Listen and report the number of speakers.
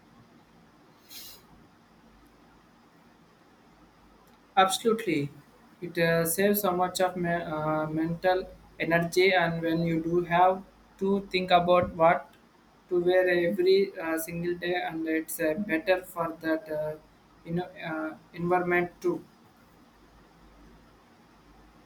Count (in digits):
1